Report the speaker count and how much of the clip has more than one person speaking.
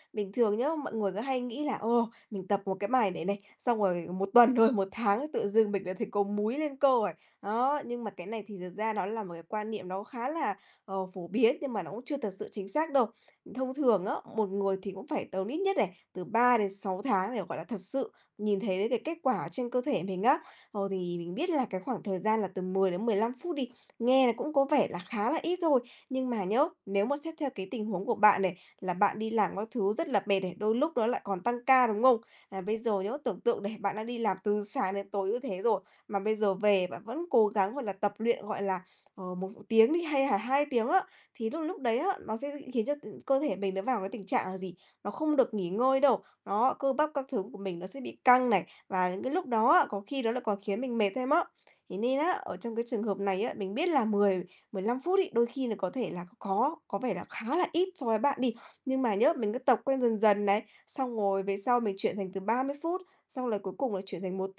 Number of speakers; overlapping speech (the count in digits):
1, no overlap